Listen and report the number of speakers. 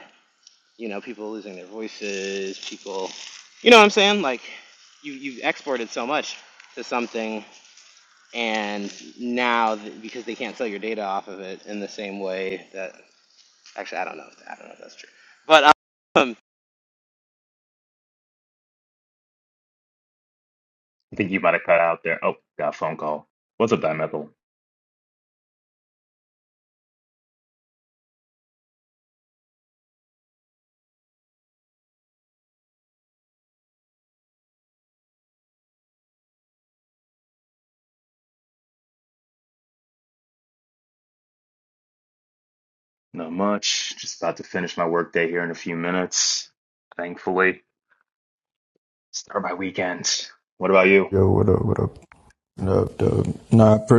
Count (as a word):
three